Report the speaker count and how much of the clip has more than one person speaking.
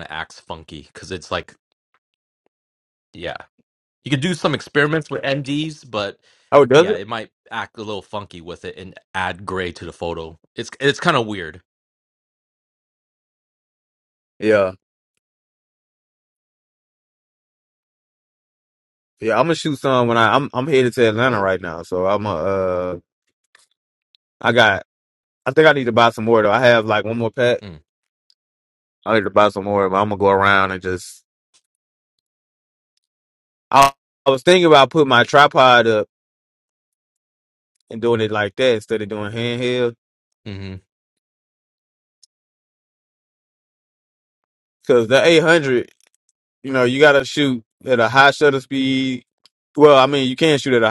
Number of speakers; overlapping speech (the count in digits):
2, about 1%